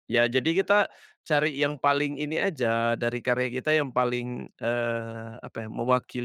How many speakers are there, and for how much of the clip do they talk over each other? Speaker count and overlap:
1, no overlap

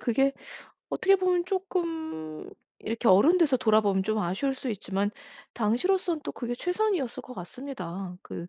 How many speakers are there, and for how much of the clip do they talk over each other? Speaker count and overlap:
1, no overlap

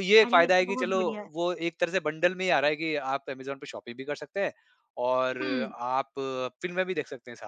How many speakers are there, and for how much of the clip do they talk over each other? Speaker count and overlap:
2, about 16%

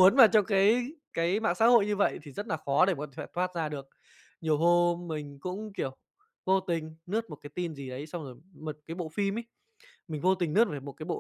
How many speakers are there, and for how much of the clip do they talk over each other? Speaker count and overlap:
1, no overlap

